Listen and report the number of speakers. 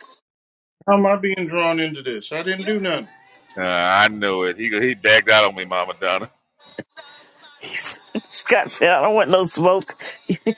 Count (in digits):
3